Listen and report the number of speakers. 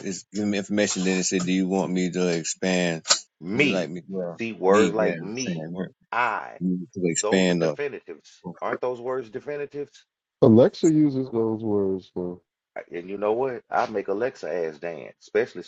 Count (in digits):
3